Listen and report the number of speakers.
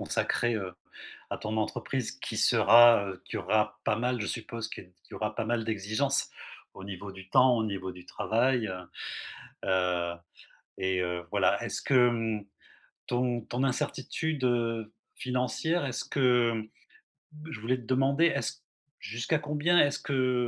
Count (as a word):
one